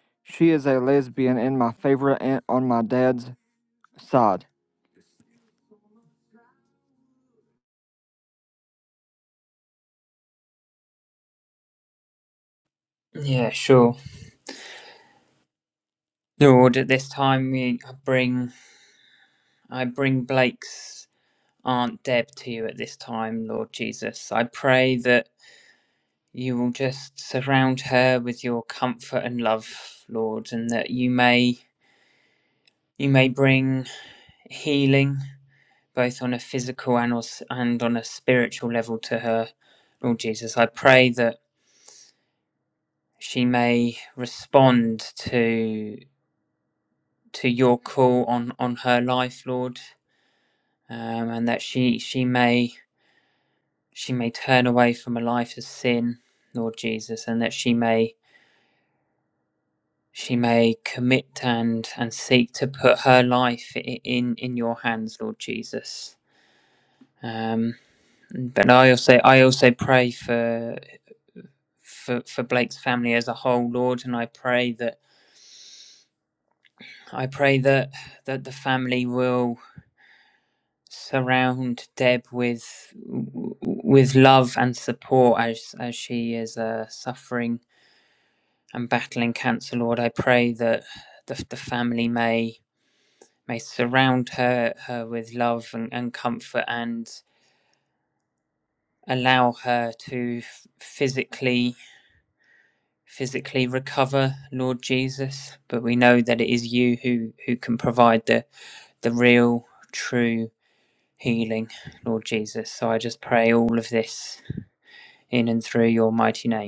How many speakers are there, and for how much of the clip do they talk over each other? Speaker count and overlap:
2, no overlap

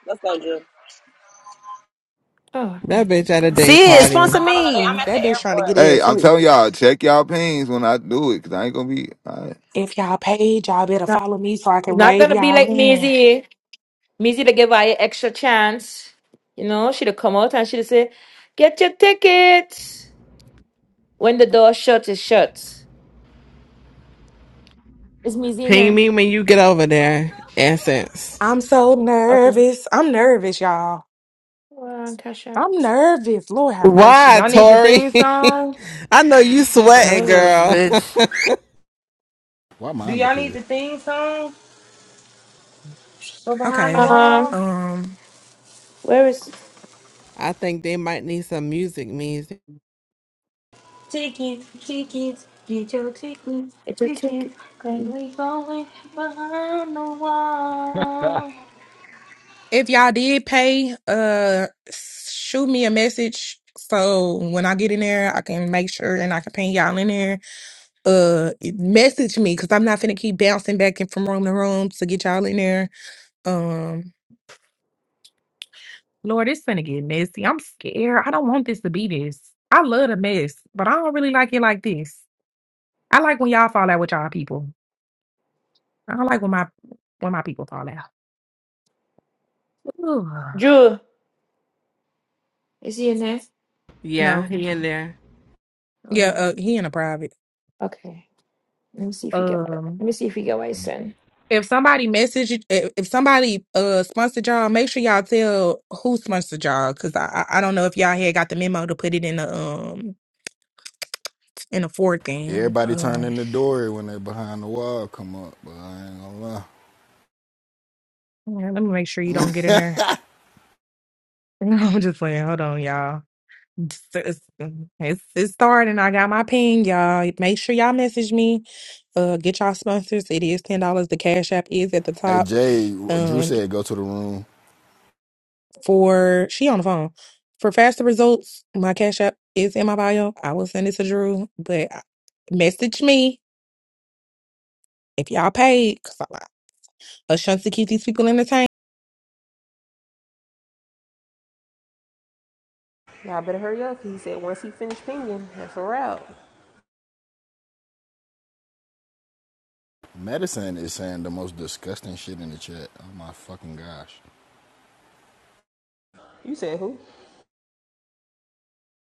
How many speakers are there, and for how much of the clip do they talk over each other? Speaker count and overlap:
8, about 7%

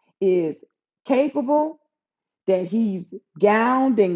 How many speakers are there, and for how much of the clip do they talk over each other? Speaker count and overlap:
1, no overlap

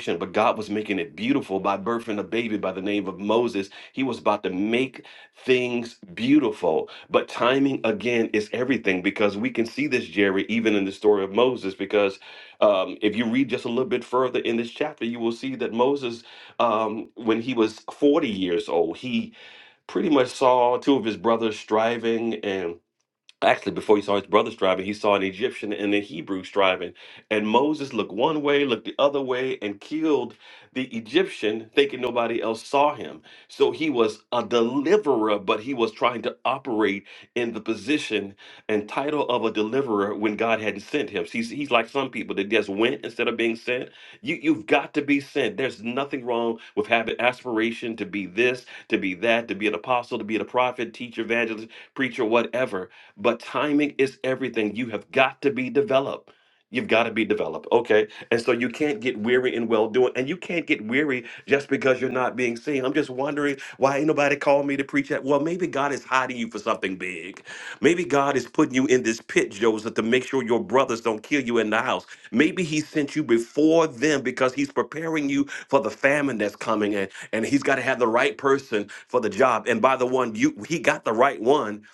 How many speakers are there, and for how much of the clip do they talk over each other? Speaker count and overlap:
1, no overlap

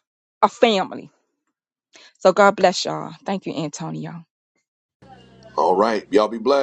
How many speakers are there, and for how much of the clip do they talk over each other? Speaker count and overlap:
2, no overlap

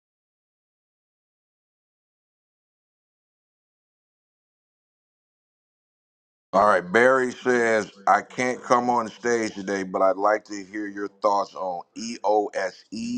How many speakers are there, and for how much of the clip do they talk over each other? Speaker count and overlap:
1, no overlap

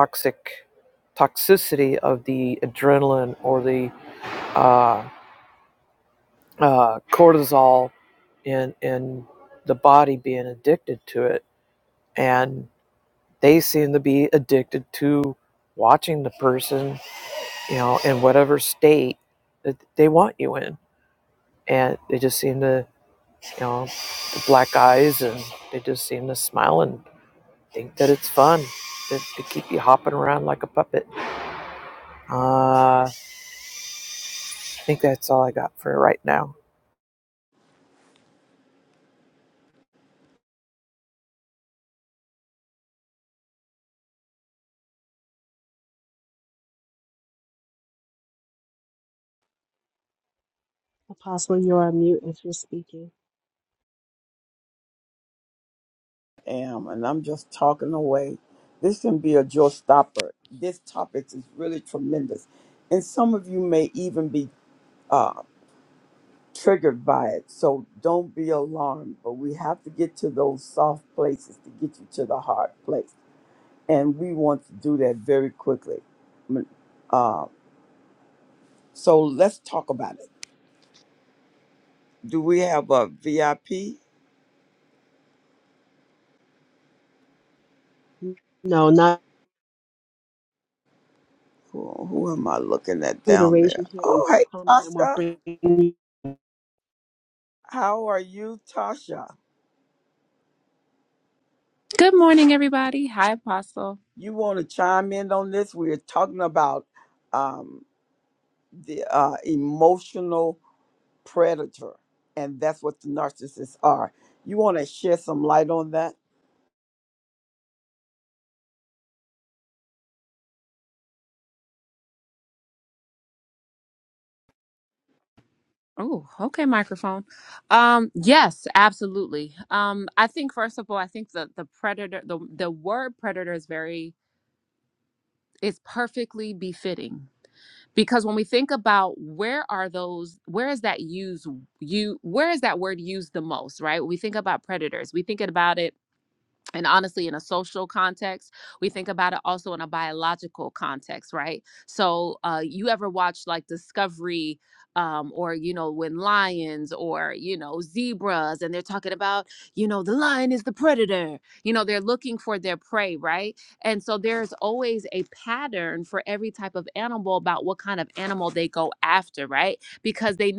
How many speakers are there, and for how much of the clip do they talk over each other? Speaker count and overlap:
4, about 1%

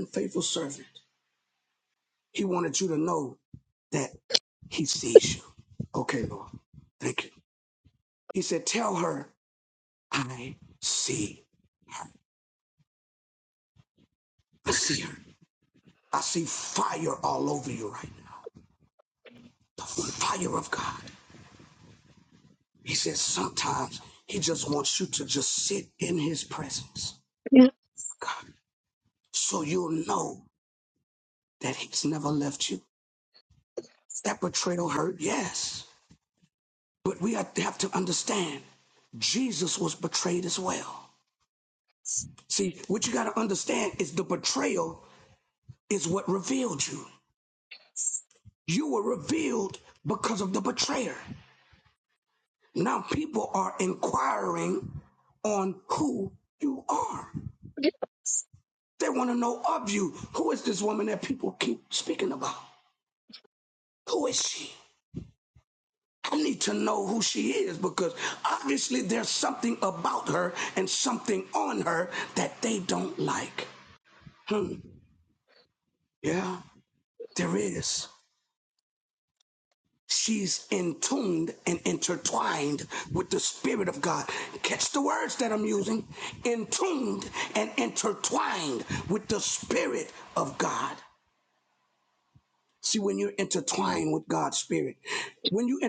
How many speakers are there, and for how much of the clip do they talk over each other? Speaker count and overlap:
1, no overlap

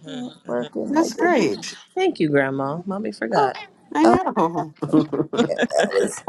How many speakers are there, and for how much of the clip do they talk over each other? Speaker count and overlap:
3, about 21%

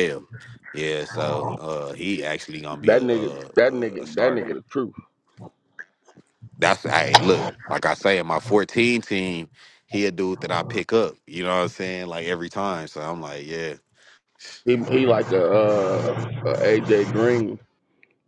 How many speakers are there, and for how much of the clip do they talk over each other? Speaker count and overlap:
2, about 9%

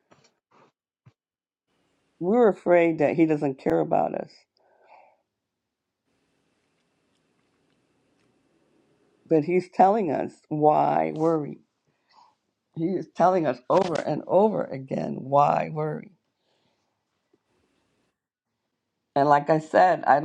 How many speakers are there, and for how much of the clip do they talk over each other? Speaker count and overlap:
1, no overlap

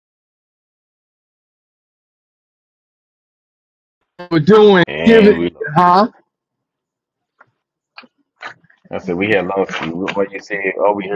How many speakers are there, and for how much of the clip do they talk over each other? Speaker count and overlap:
2, about 7%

